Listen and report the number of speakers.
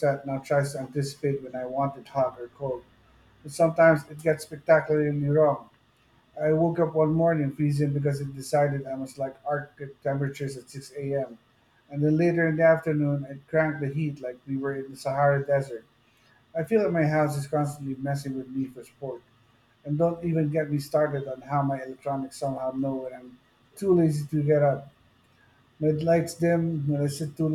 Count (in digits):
1